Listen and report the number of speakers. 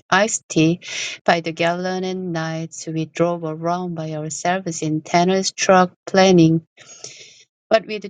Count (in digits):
1